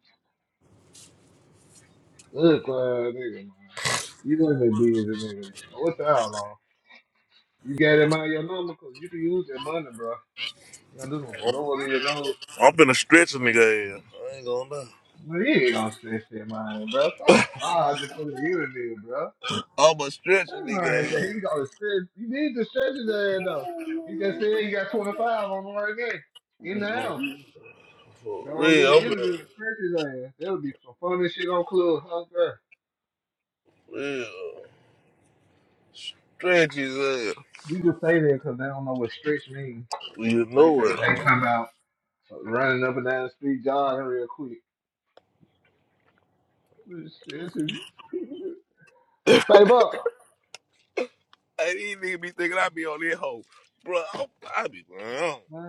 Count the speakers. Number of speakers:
2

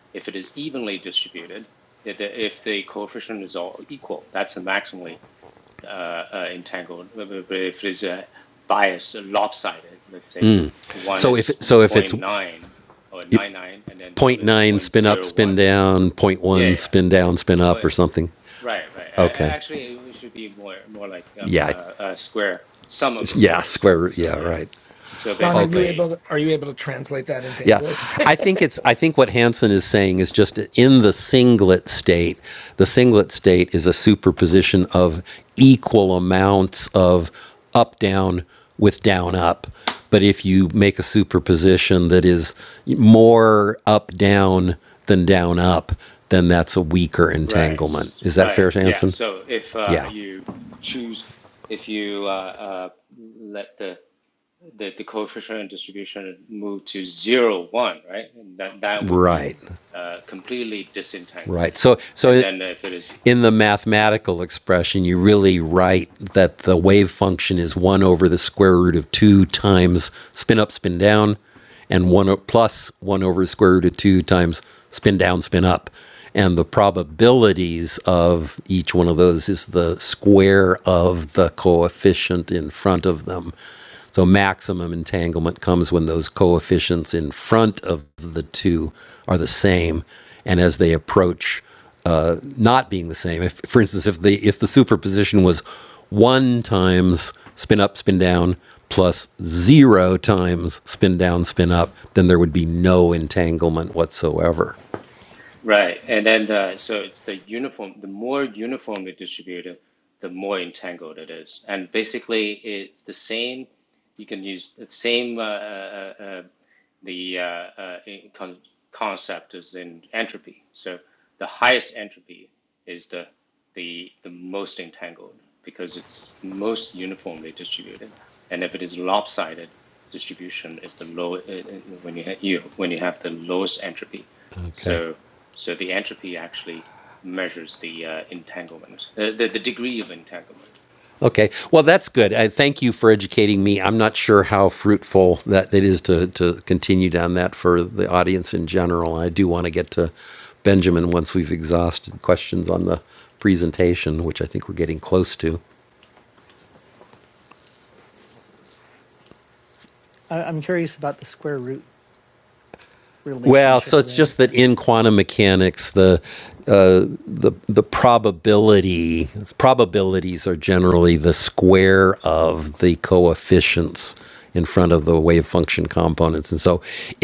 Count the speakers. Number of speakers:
4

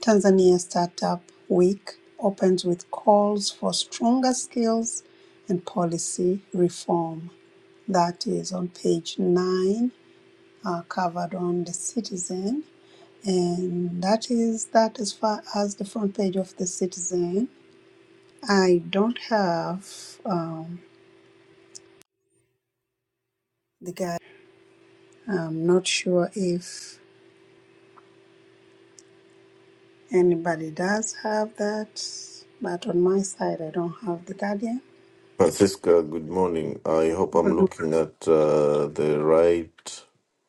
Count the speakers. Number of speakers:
2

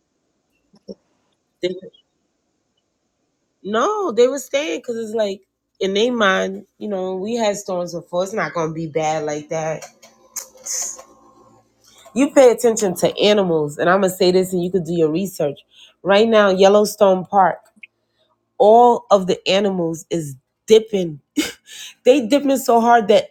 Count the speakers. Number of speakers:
1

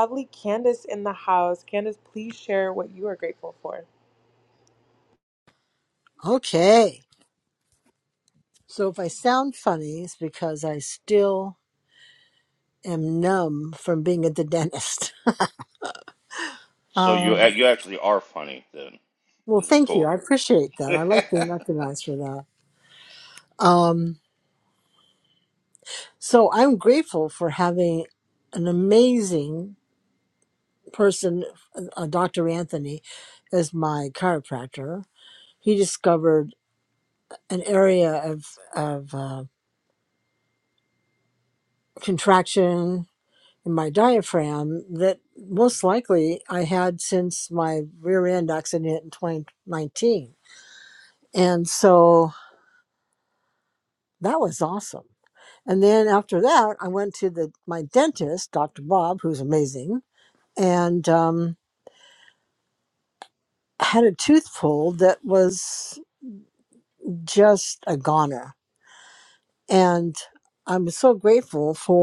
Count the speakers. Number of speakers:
3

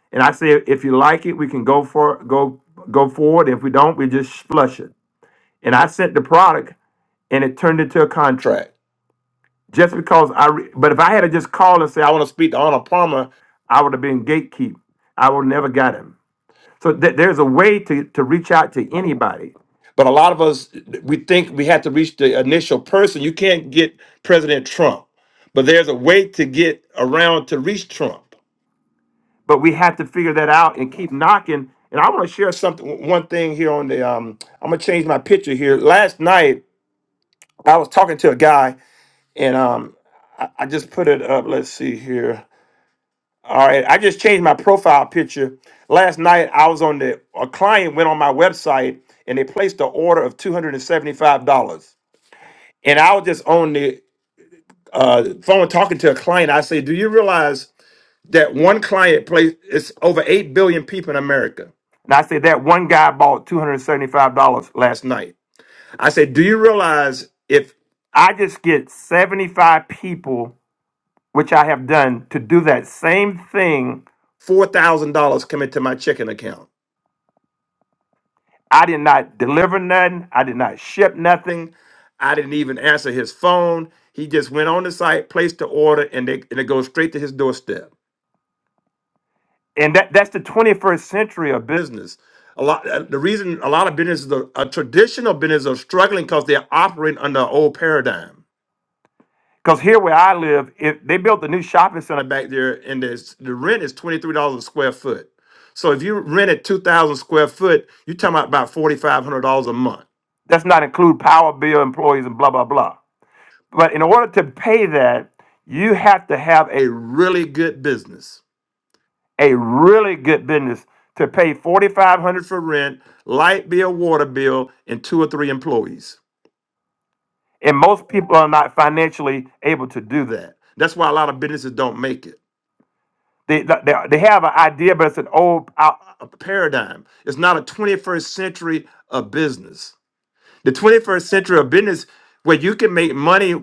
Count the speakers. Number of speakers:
1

